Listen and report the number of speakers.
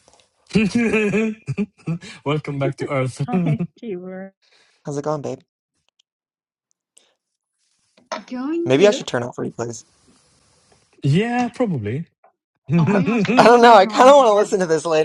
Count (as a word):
three